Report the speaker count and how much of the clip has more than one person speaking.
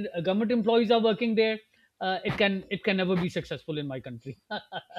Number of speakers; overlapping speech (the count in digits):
1, no overlap